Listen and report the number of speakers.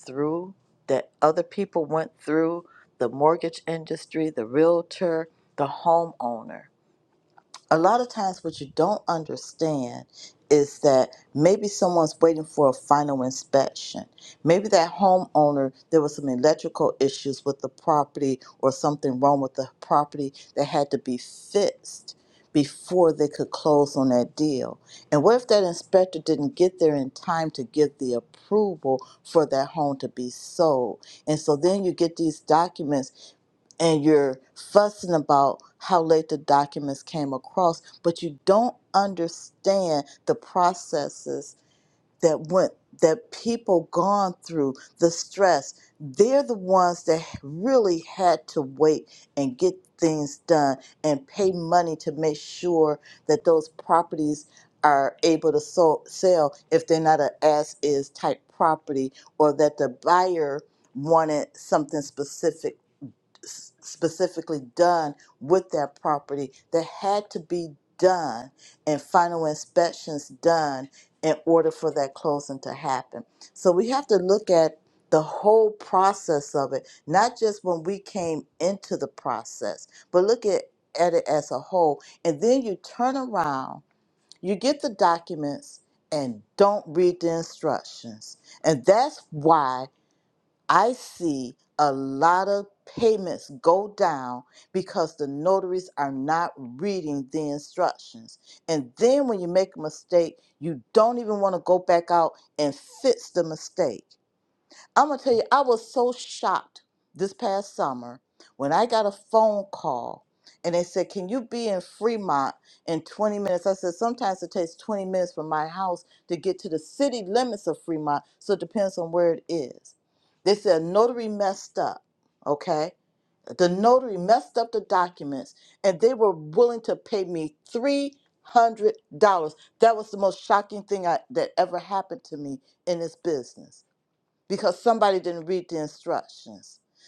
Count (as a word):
one